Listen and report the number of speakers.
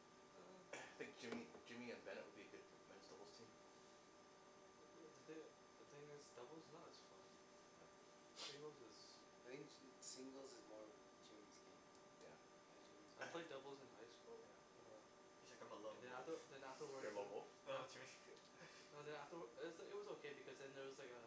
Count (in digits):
4